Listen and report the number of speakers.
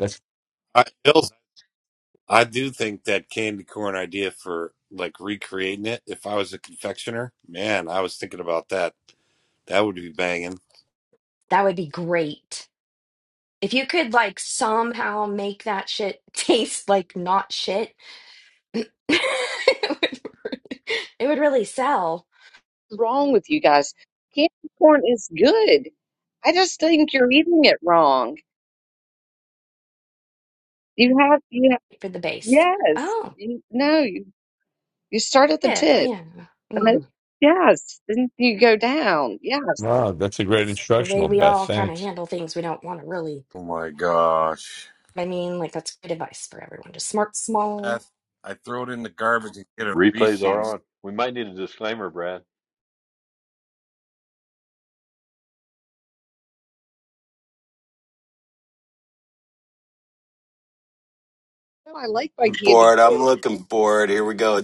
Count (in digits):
6